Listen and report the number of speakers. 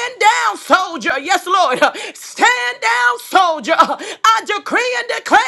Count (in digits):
1